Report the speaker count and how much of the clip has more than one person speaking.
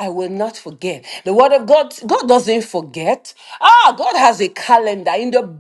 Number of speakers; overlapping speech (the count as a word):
one, no overlap